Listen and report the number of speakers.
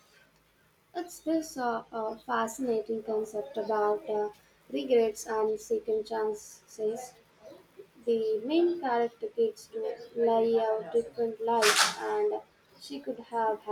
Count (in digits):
1